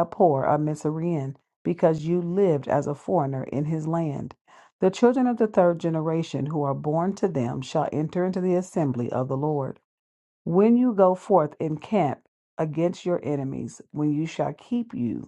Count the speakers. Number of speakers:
1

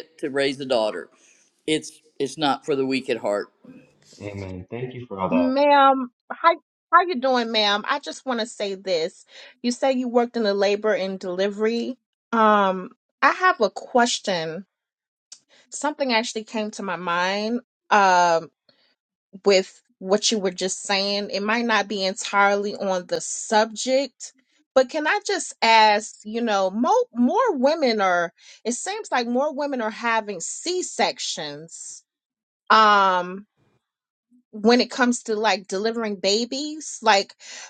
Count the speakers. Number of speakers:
3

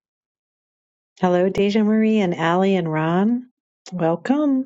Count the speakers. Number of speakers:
1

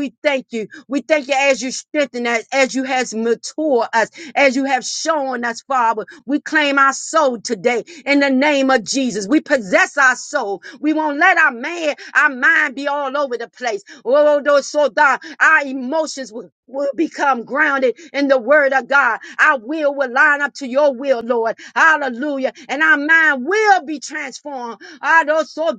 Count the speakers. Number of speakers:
1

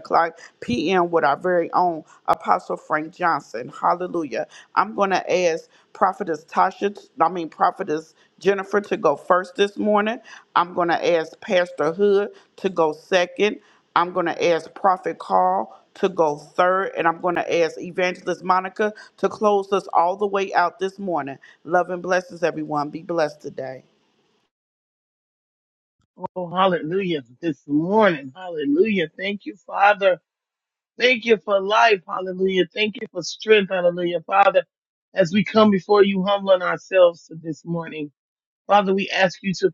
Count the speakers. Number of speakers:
2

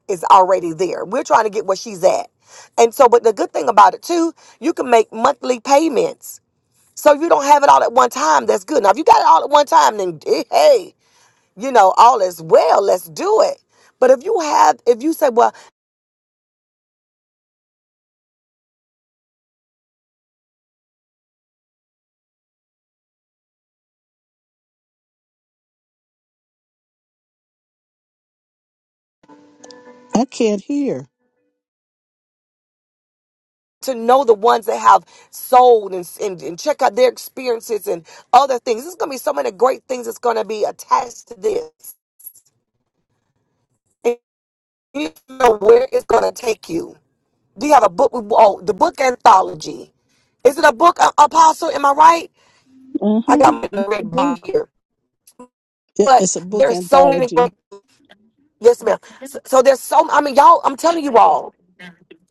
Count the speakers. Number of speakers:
2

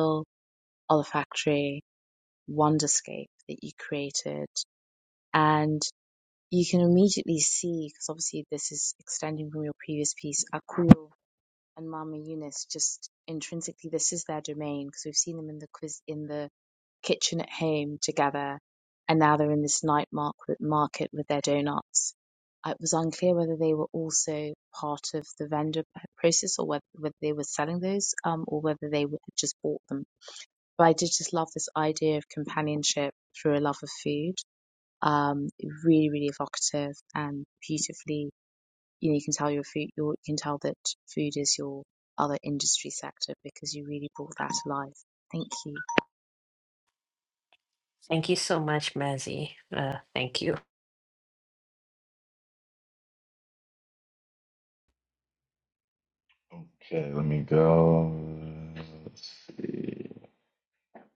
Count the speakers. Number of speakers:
3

